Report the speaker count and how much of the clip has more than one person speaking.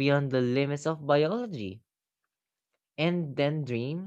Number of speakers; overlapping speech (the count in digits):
1, no overlap